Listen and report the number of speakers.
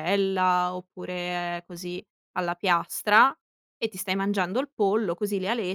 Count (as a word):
one